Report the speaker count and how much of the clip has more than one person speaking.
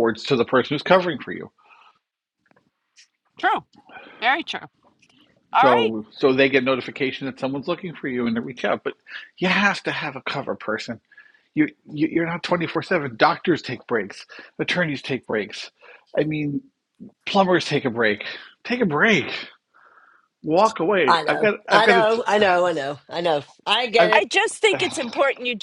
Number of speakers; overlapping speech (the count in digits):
3, about 6%